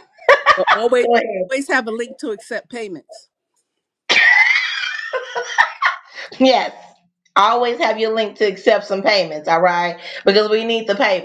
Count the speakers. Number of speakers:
2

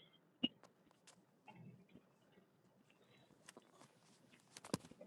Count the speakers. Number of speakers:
0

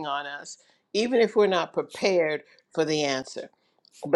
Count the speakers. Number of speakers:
1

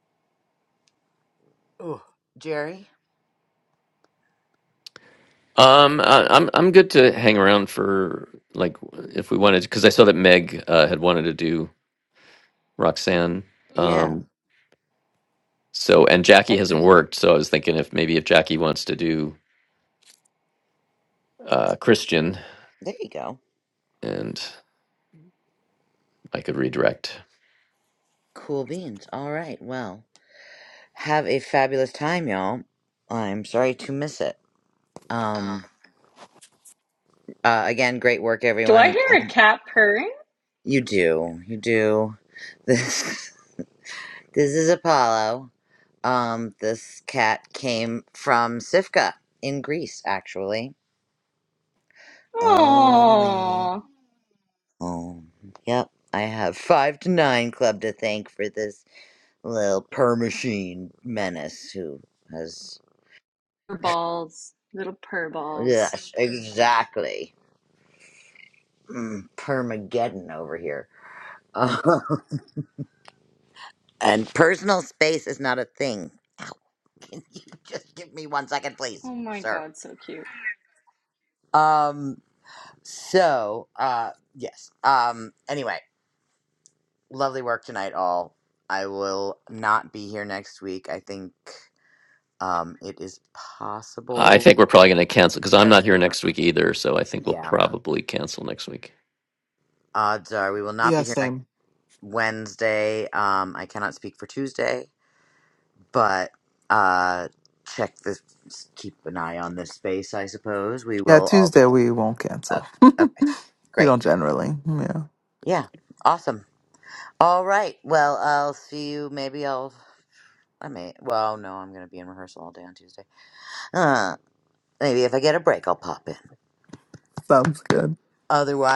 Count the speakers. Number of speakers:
4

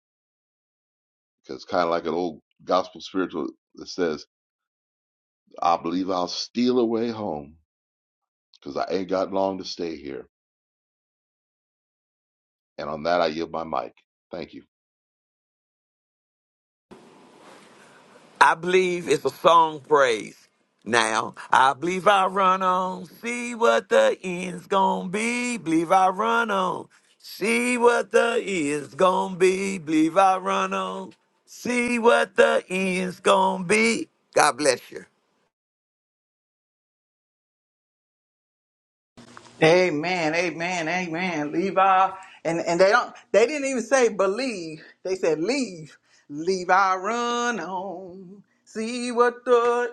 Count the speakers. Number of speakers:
3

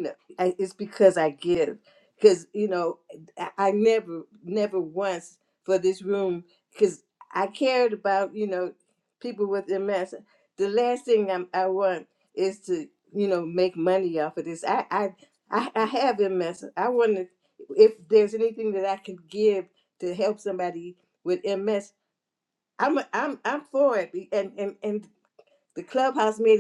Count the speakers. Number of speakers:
1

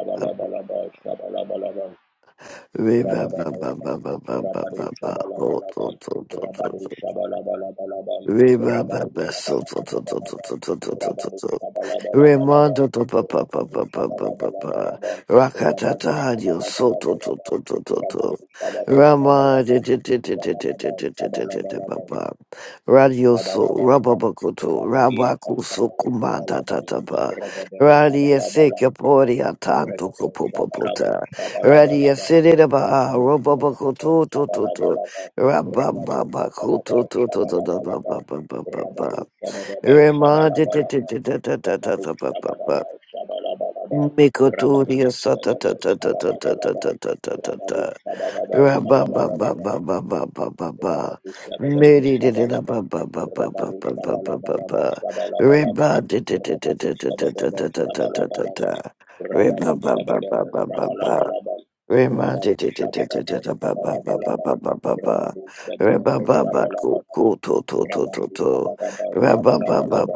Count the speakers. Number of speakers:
2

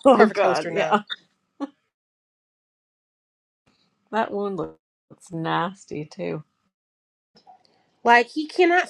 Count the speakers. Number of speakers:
2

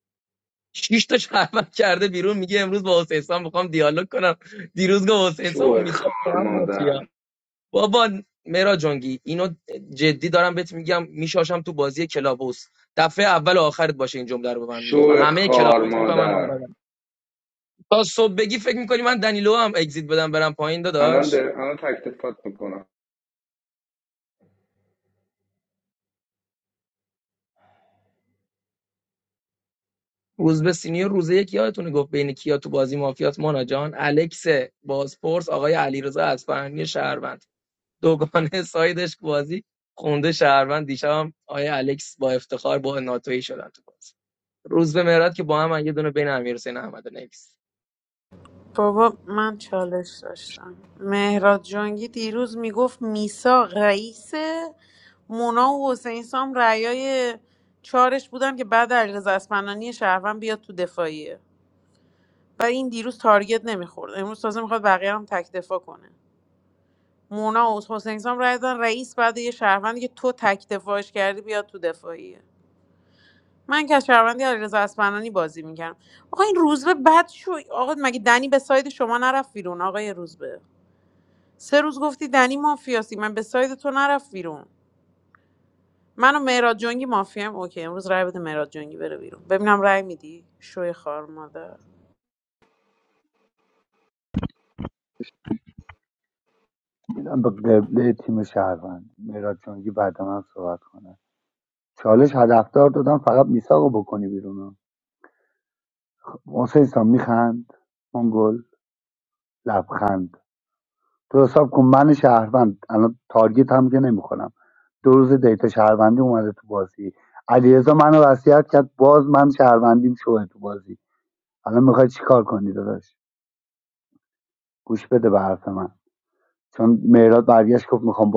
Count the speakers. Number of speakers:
4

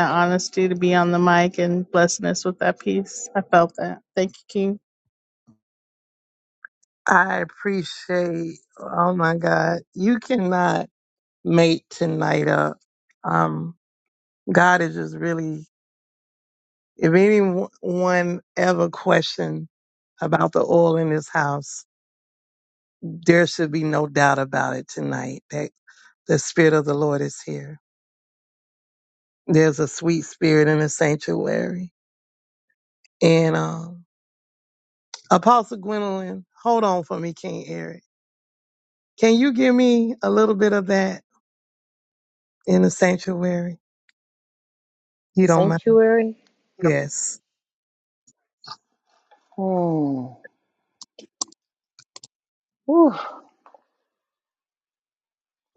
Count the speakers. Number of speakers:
3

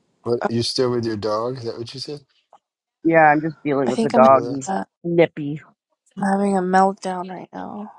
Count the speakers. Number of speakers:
3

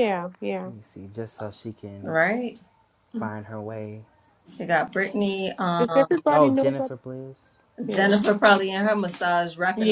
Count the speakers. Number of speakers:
3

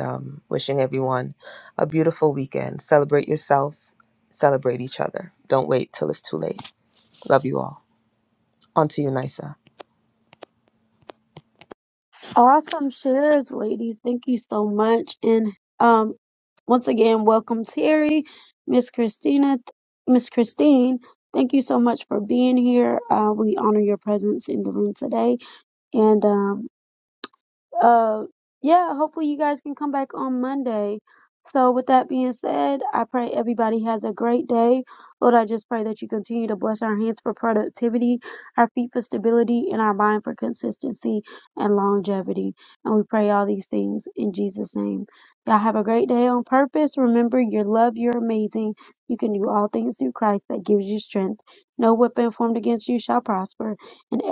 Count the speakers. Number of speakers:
2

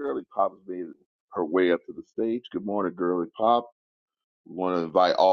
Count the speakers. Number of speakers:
1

